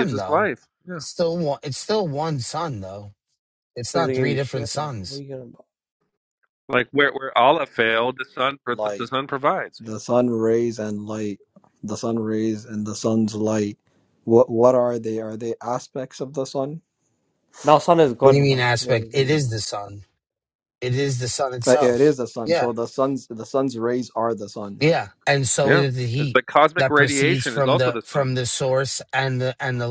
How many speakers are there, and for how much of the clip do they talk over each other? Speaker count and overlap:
4, about 18%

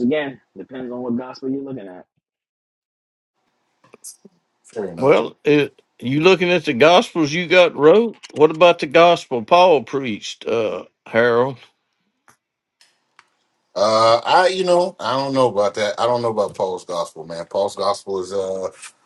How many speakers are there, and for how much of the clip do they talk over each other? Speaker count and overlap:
3, about 1%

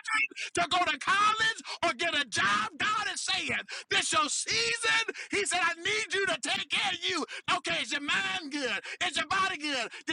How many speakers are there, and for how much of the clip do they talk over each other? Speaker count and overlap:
1, no overlap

